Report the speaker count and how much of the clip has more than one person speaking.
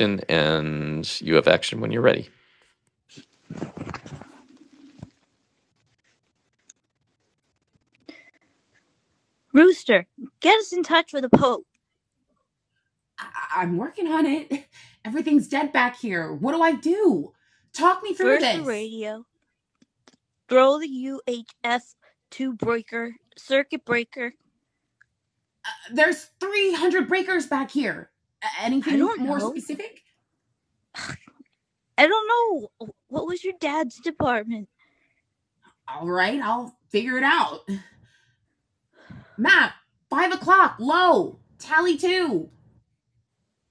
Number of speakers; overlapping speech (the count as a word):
three, about 3%